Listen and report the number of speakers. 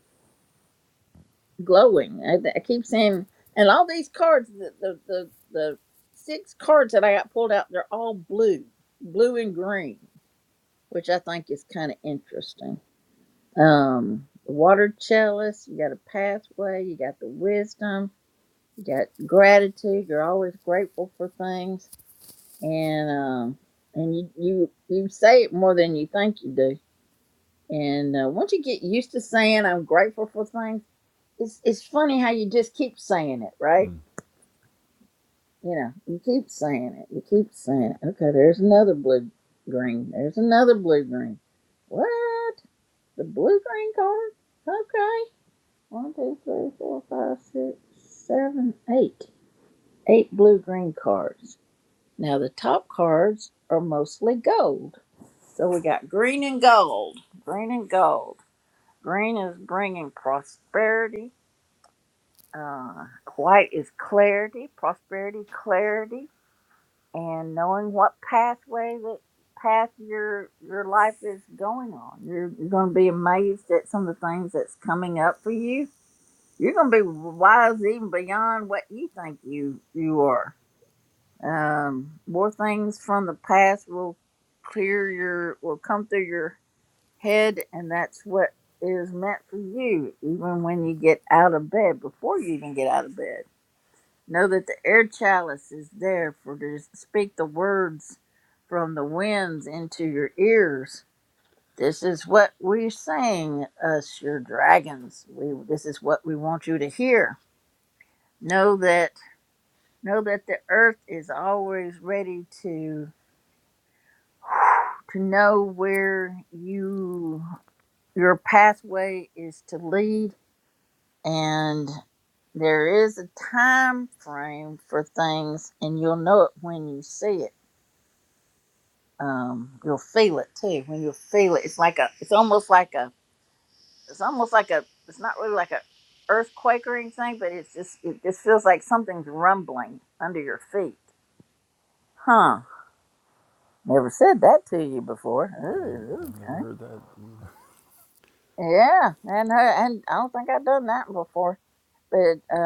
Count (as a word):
two